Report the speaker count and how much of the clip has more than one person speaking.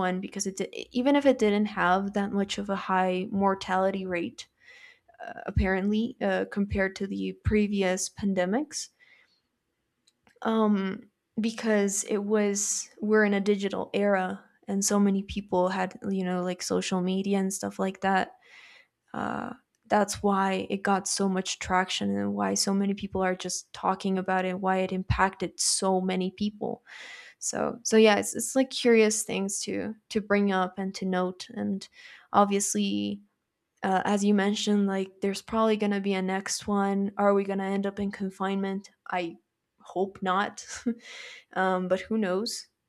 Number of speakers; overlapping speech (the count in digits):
1, no overlap